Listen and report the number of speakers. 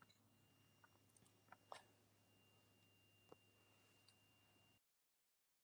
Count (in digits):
0